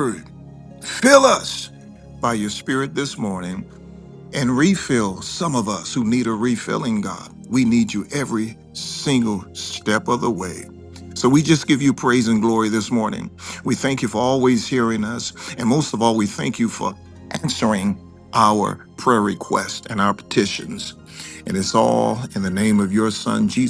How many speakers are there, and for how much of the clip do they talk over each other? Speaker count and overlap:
one, no overlap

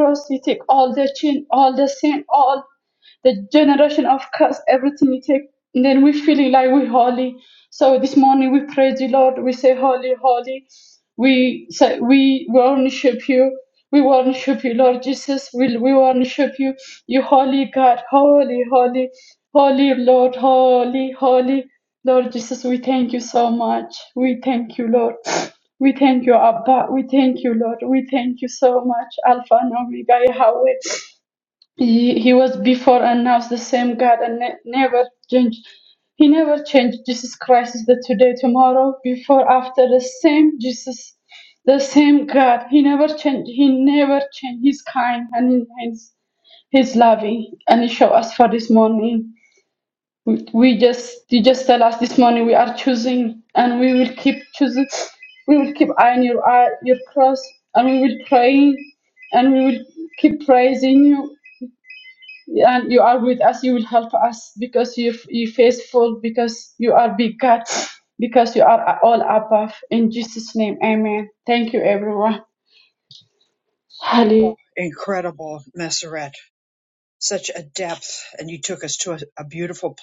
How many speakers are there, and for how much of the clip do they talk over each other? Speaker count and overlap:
two, under 1%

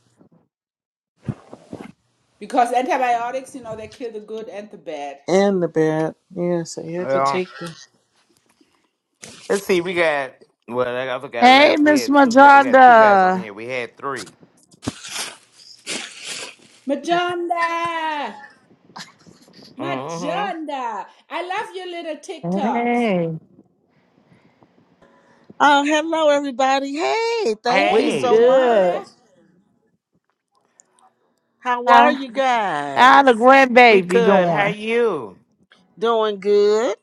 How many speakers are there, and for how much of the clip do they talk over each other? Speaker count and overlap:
five, about 16%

